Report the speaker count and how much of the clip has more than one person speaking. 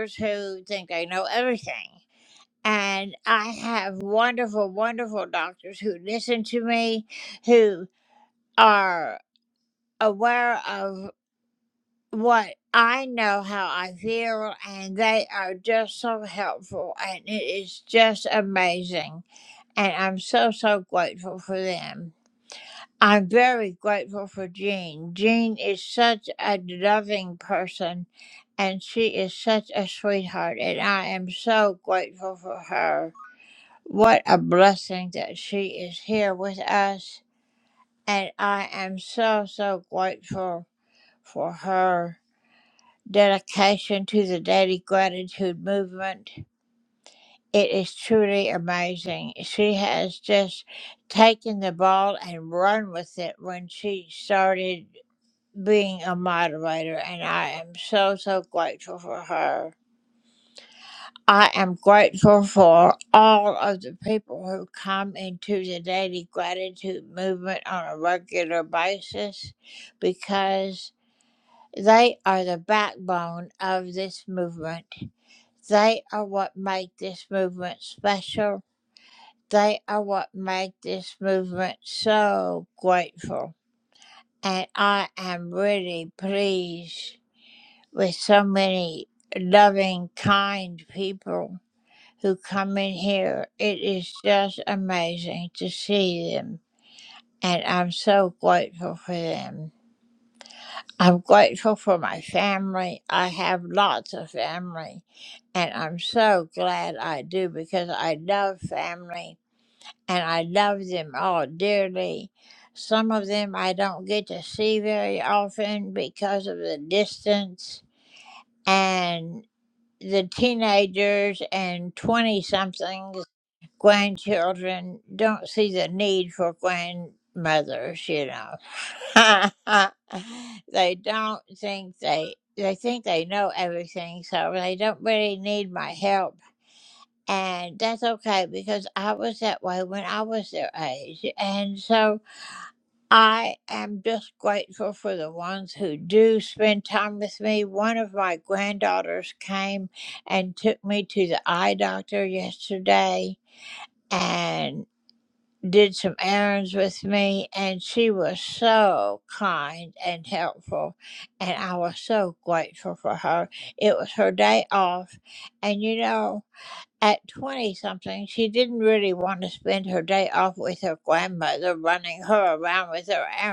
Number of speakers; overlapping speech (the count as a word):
one, no overlap